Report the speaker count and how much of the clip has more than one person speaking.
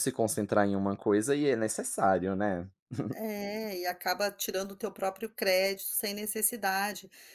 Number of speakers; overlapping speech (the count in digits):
2, no overlap